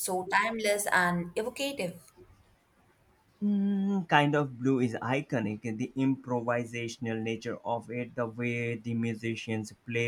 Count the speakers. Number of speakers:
2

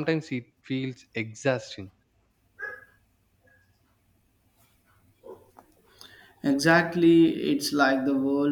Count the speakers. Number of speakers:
2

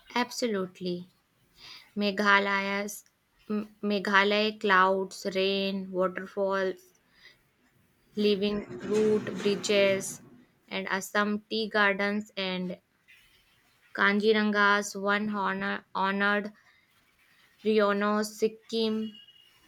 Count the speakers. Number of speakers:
1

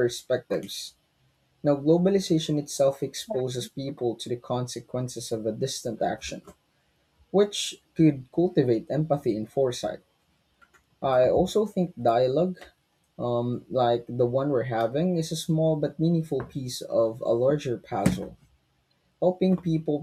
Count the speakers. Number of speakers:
1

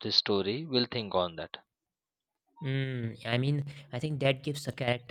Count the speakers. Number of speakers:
2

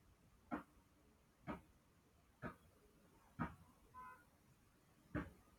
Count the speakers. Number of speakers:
0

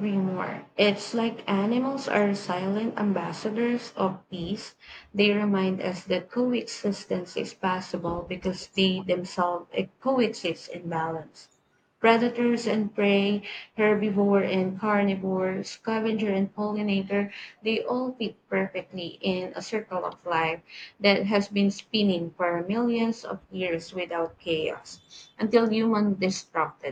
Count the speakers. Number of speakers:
1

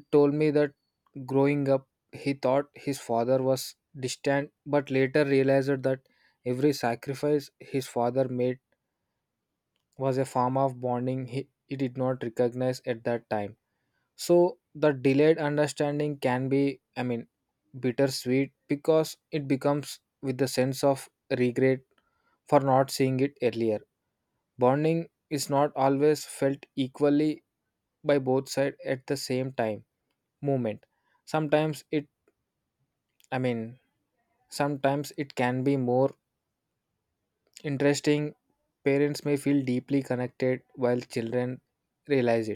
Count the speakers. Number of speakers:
1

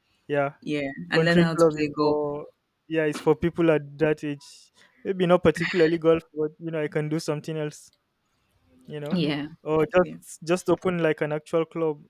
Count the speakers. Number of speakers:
2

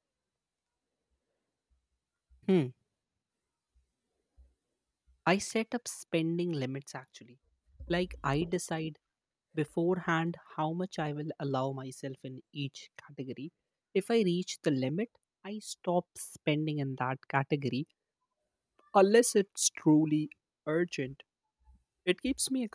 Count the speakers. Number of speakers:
1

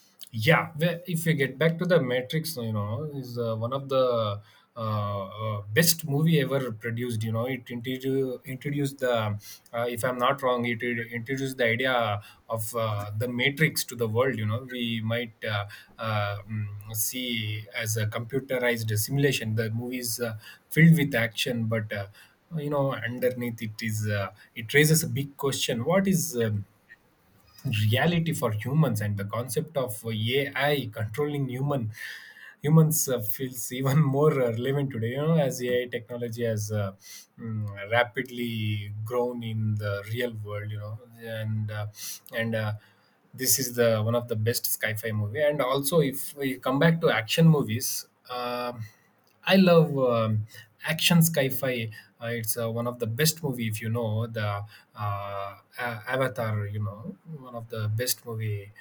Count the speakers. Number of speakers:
1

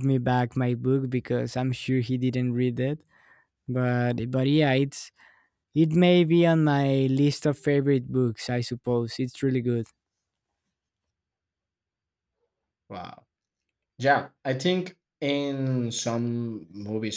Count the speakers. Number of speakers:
2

